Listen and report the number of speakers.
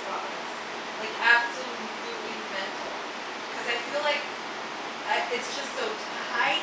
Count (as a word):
one